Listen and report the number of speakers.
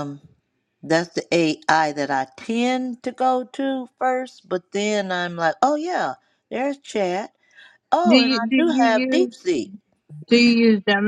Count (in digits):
2